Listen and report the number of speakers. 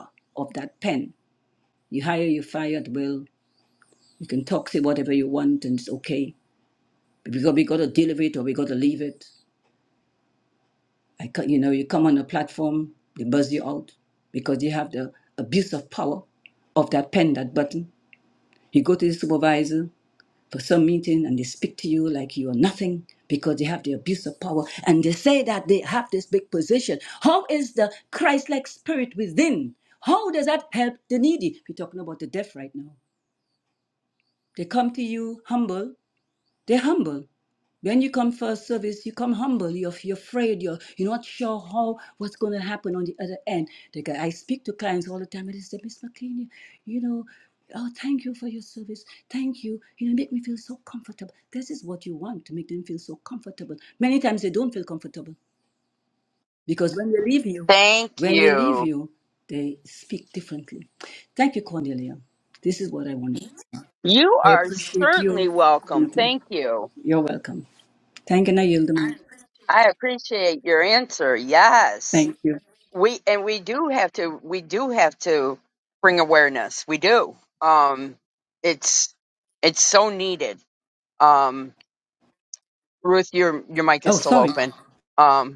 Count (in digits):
2